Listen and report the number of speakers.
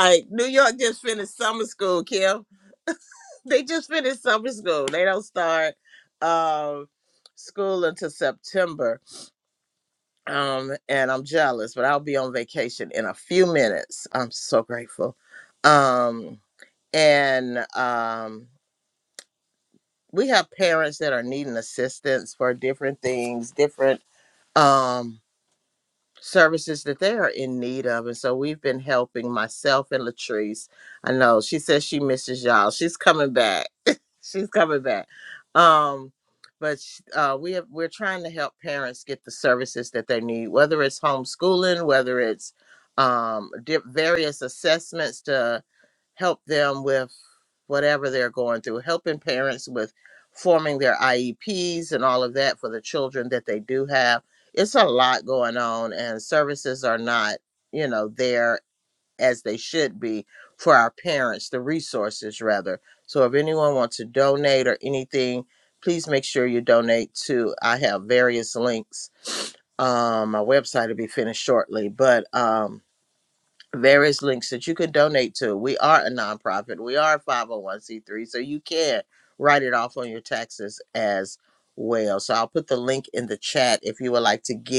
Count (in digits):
1